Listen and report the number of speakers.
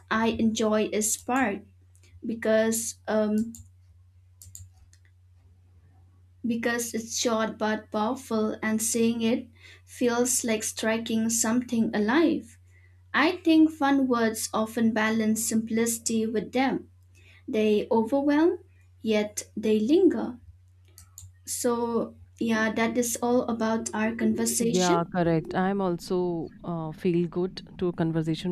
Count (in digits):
2